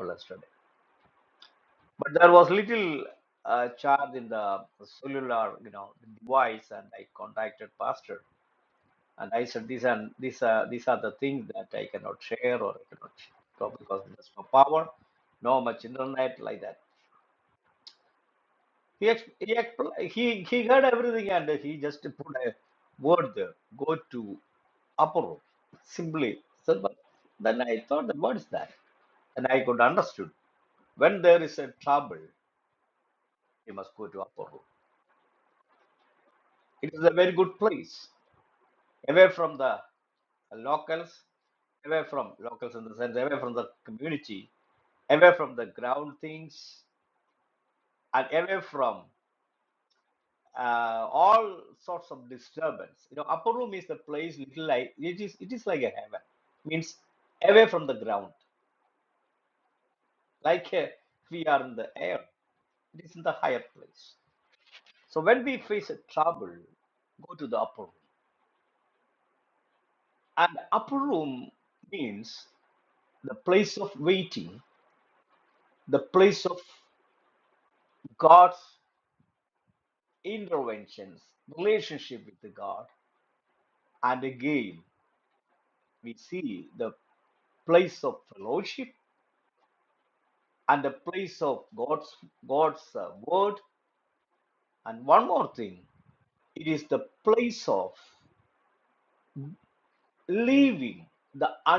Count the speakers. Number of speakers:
1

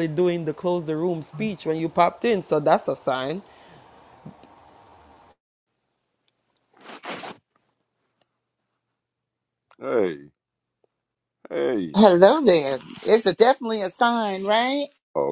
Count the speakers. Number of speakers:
3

